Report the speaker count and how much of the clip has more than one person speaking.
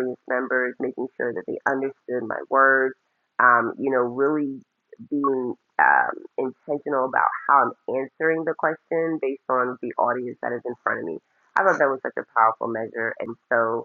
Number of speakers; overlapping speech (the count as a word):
one, no overlap